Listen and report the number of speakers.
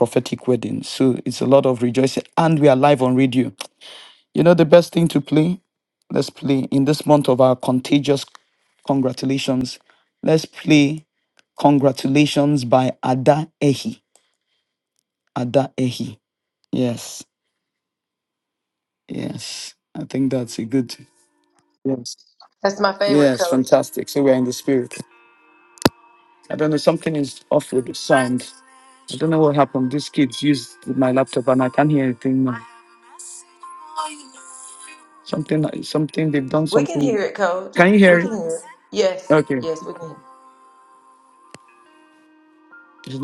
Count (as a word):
two